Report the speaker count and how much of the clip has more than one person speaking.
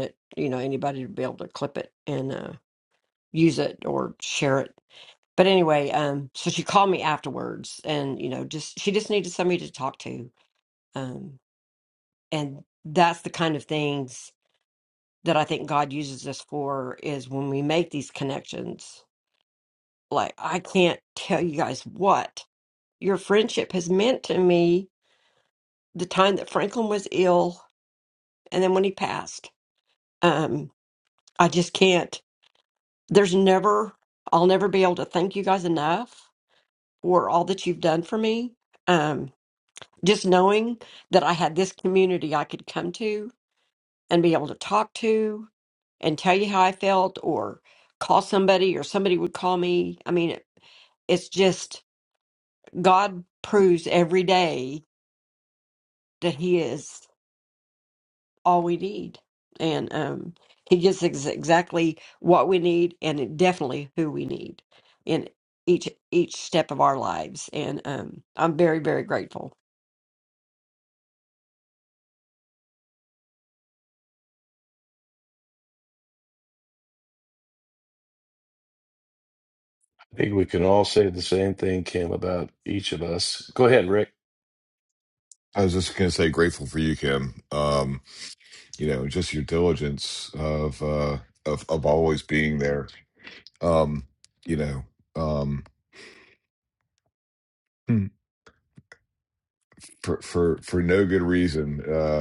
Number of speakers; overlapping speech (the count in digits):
3, no overlap